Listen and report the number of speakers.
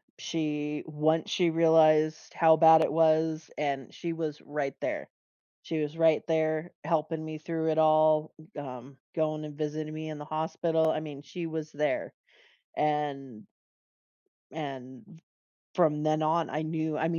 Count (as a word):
one